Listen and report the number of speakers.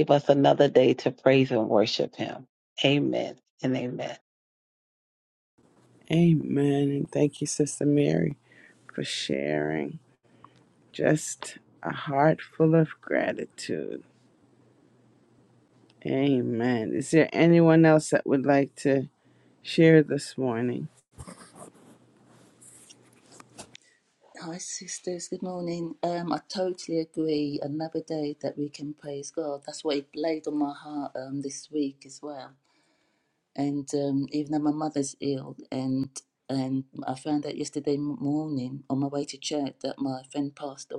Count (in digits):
3